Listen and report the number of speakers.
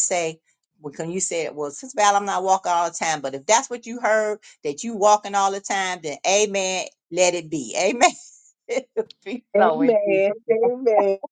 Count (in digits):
2